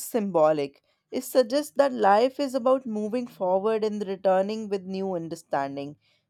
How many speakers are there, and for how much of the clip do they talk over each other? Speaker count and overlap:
1, no overlap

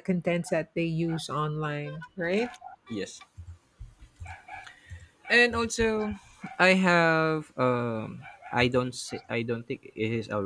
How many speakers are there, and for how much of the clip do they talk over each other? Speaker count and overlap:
2, no overlap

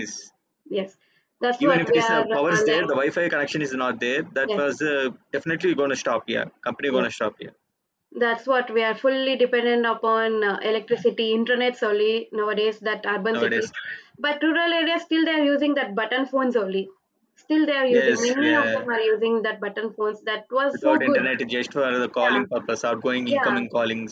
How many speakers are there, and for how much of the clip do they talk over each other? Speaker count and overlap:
2, about 18%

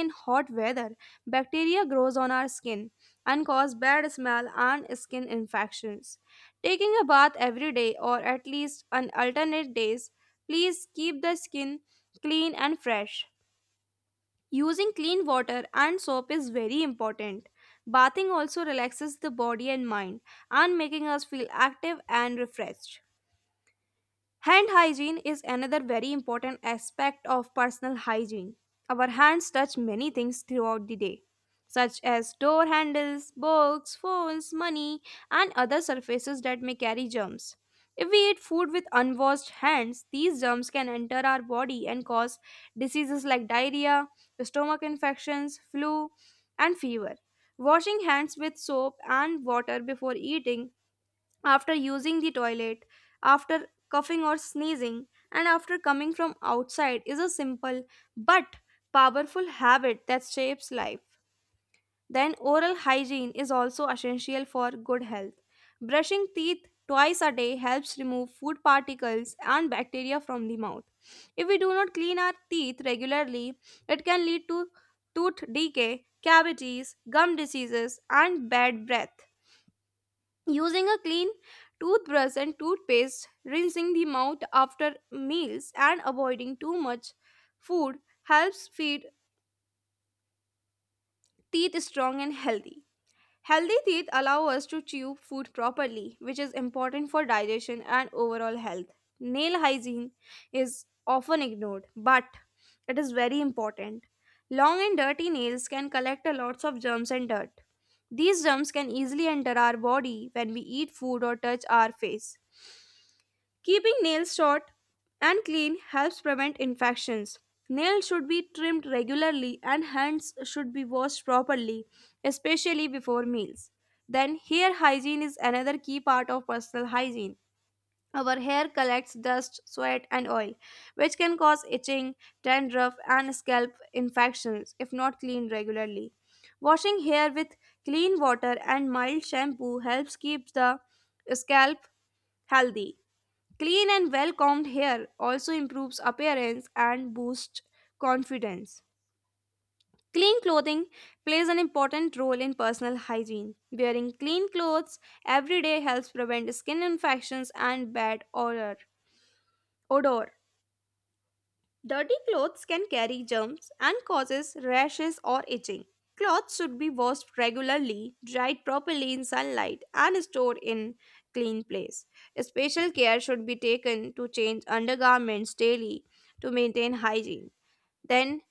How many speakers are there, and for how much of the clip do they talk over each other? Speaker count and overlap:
1, no overlap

